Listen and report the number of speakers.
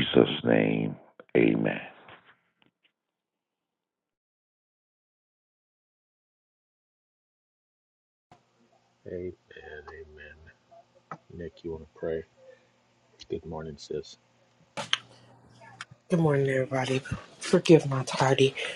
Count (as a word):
three